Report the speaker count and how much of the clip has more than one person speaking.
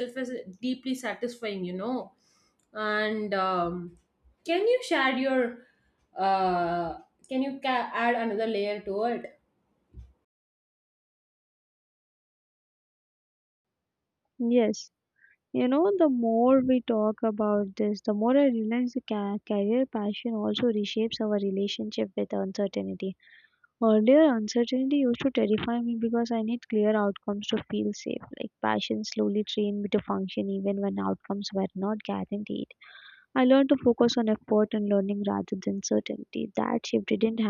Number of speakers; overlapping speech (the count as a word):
two, no overlap